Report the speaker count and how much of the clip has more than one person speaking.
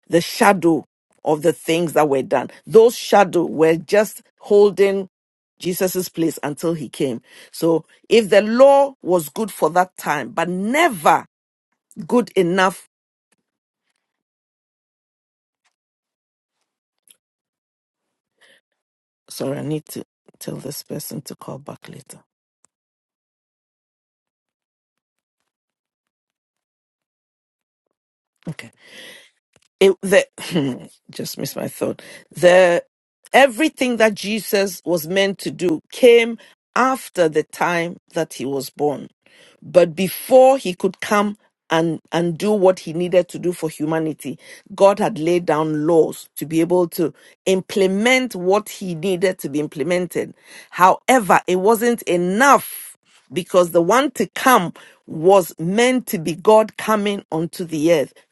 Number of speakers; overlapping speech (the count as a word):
one, no overlap